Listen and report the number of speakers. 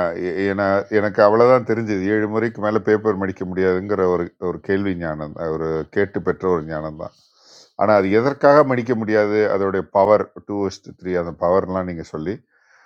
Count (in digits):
1